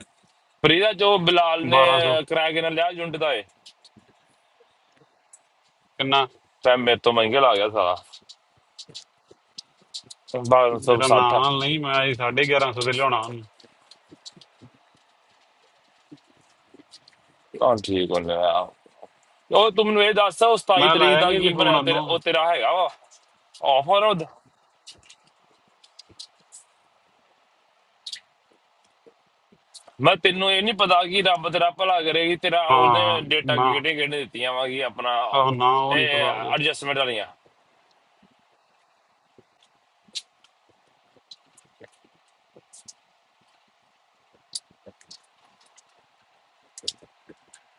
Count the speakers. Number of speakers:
two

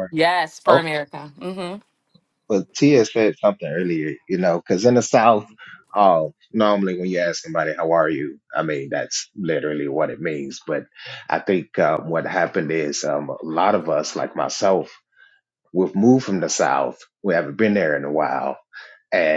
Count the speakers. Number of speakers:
two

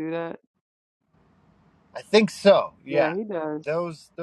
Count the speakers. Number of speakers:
two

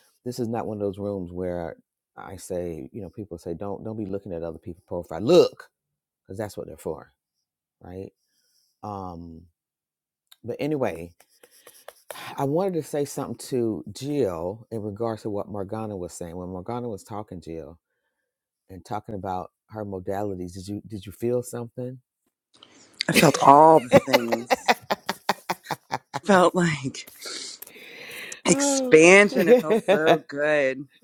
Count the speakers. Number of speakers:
two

